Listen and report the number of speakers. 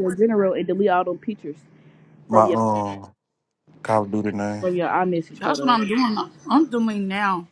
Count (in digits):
3